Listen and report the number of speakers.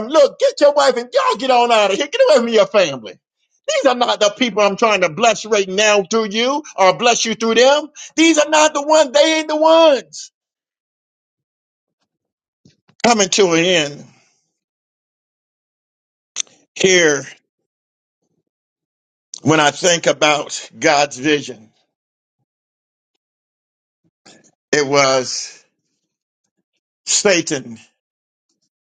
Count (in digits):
1